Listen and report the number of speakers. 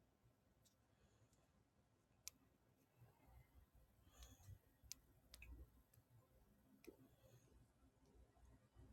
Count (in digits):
0